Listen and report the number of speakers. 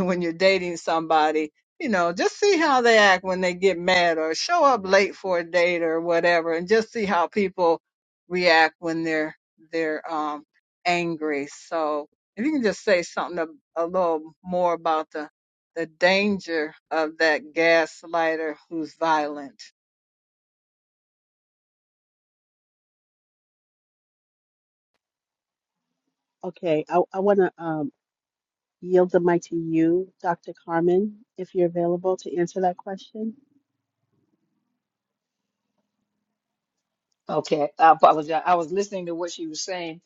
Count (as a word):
three